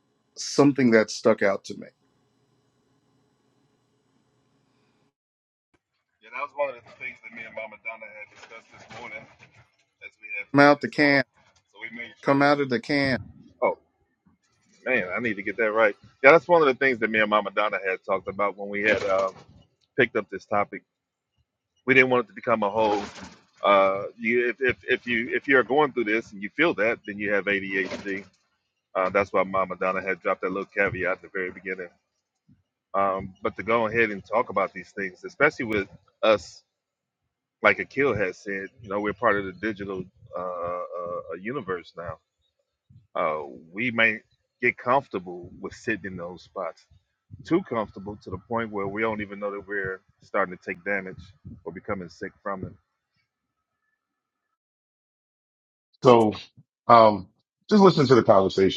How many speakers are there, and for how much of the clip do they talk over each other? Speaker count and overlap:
three, about 1%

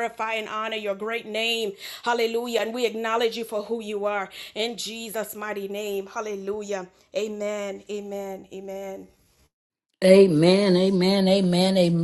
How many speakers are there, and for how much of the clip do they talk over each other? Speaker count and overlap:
two, no overlap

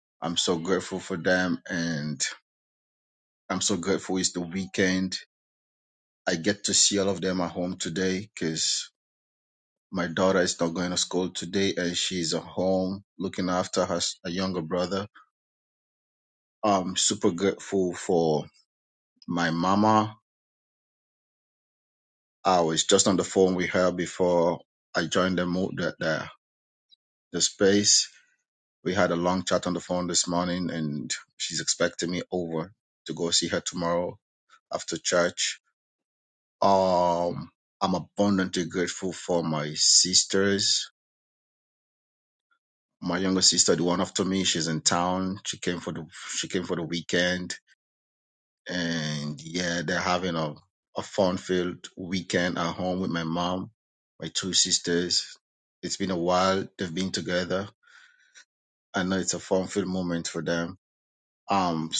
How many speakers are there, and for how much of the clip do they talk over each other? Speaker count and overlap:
one, no overlap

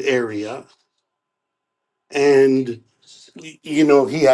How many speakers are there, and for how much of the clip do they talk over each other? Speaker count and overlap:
one, no overlap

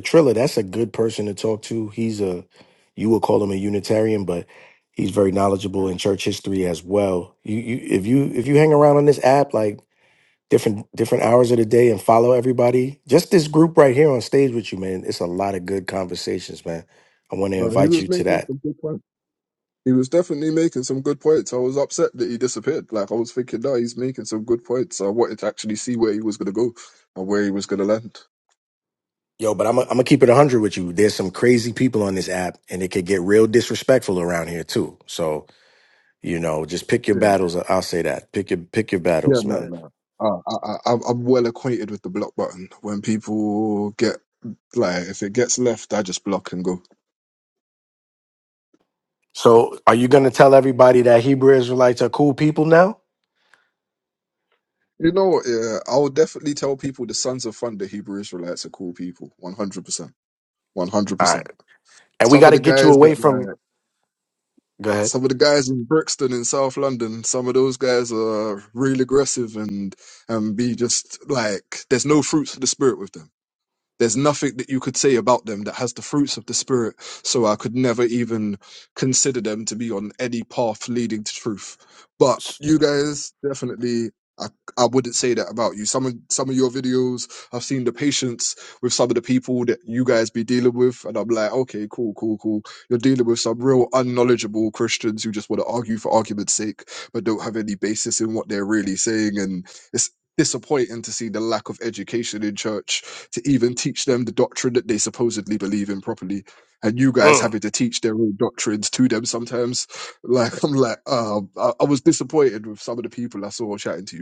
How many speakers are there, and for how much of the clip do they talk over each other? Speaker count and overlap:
two, about 3%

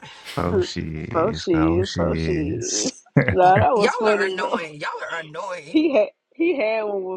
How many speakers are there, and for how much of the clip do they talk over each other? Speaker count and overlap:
three, about 43%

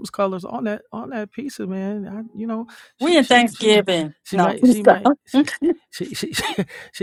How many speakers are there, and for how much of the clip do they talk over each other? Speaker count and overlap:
two, about 24%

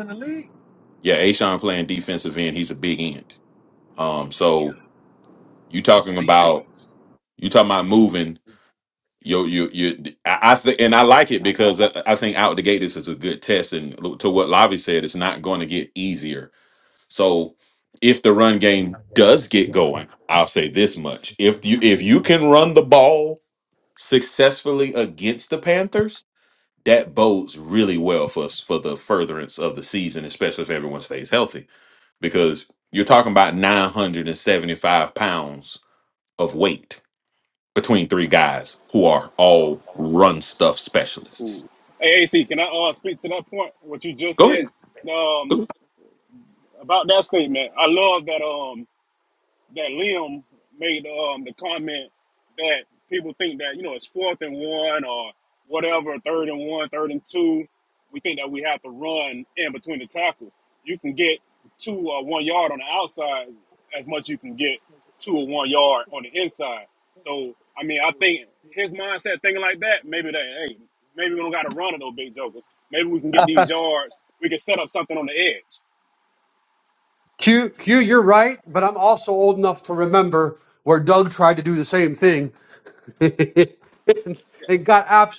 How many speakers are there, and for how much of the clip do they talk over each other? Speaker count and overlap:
four, about 2%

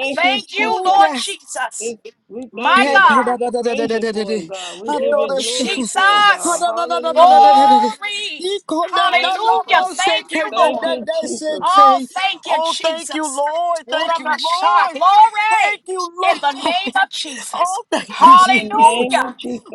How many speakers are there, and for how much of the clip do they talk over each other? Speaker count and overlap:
three, about 67%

